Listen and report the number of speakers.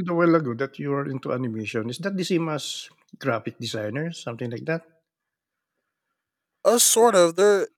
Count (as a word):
two